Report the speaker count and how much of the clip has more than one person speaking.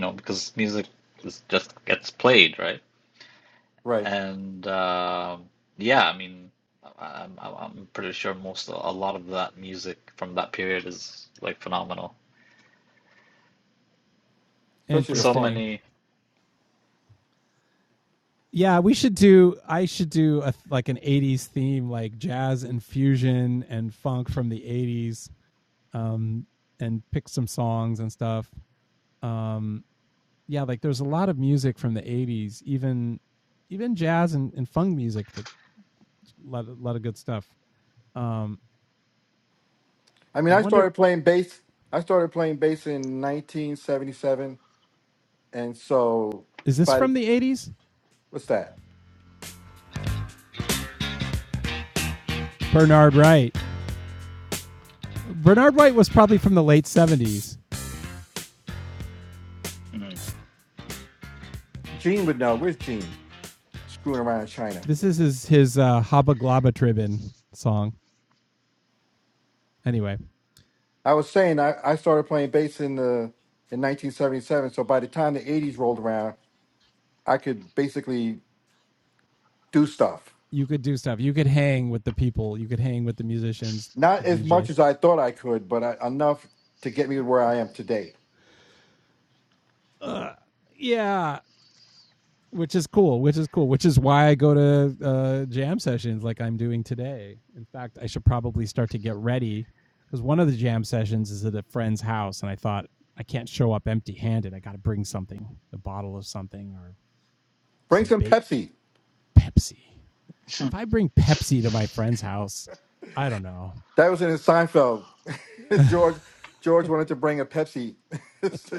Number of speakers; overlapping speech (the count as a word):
three, about 2%